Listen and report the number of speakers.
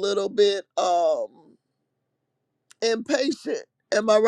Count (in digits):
1